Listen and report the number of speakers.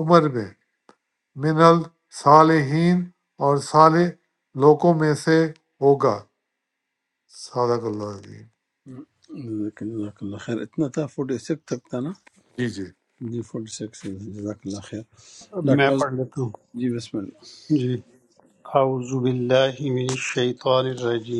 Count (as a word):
three